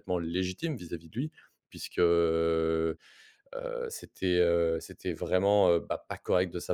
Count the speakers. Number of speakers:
1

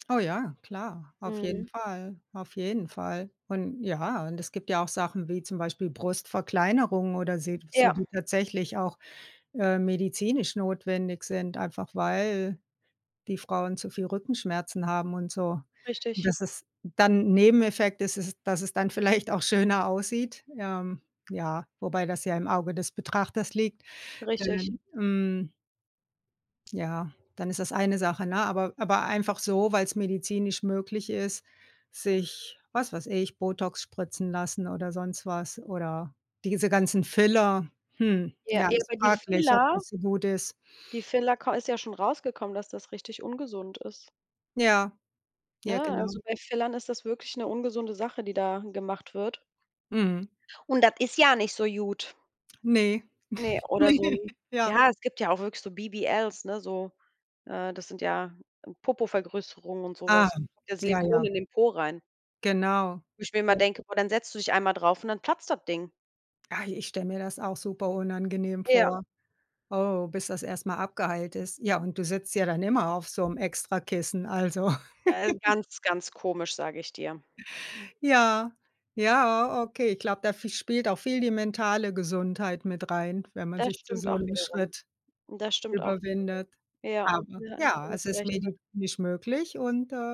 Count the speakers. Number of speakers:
2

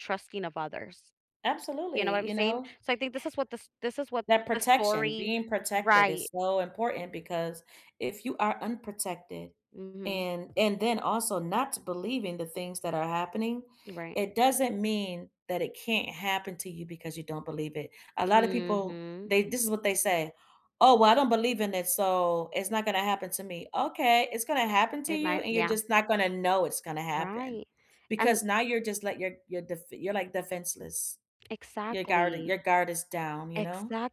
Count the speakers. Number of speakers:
2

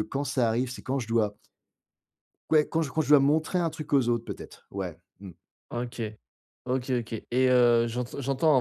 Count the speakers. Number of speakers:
2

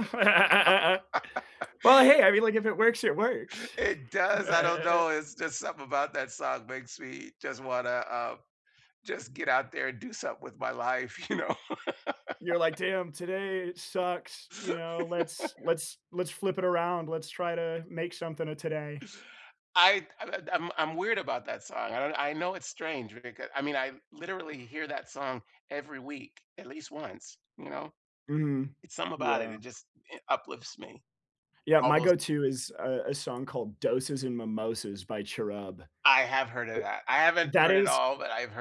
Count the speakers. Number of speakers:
2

